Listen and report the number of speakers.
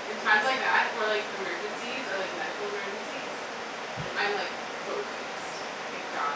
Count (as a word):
one